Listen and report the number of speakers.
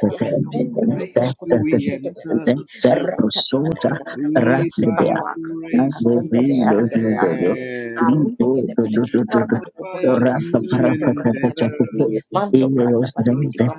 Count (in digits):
3